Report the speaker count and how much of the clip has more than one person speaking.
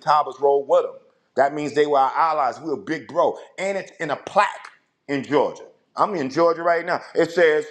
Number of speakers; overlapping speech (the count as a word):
one, no overlap